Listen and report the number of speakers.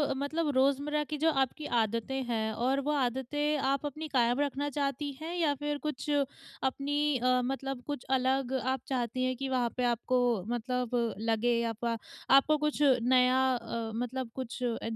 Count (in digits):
1